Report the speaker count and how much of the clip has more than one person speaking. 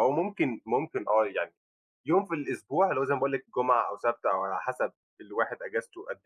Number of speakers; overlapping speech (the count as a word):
one, no overlap